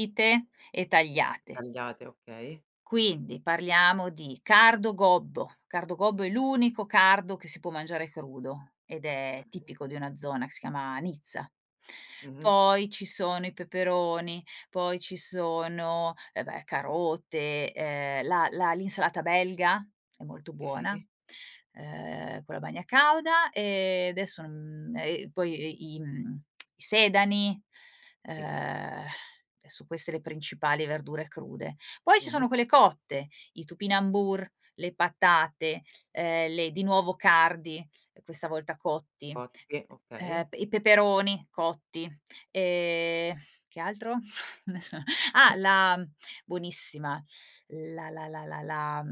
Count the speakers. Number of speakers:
two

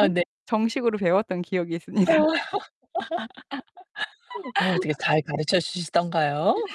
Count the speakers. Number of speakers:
two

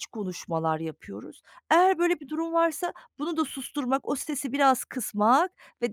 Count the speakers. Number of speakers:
one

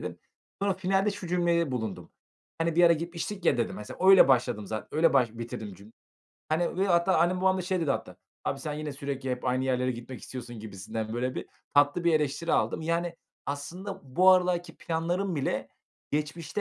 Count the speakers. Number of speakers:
one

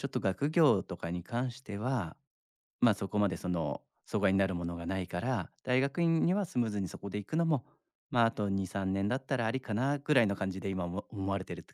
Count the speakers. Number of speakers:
one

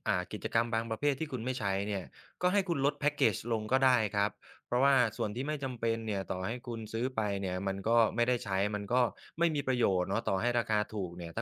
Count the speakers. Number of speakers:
one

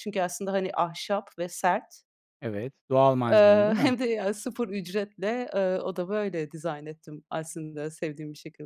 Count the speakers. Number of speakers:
two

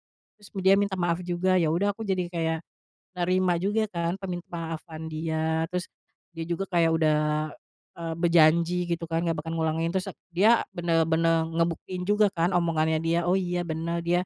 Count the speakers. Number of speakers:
one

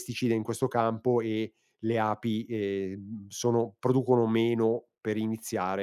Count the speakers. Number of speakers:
one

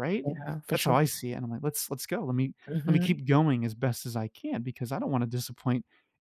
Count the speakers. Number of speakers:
two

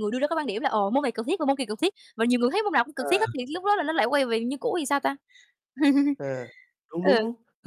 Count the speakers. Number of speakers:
two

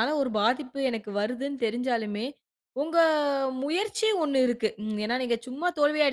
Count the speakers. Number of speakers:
one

